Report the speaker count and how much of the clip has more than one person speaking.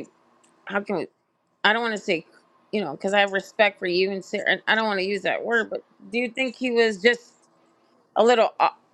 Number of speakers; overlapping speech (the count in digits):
1, no overlap